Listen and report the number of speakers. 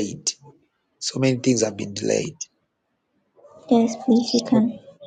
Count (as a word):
two